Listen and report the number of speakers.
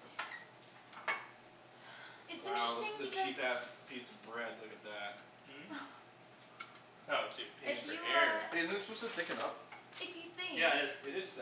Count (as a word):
four